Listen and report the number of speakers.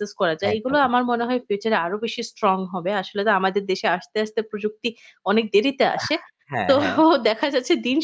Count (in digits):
2